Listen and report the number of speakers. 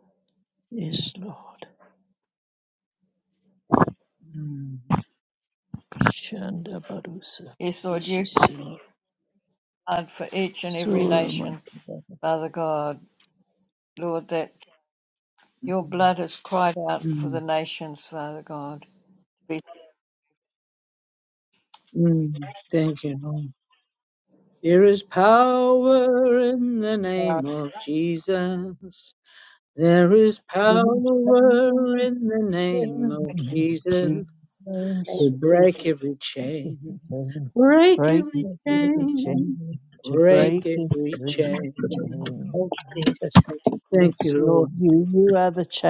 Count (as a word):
four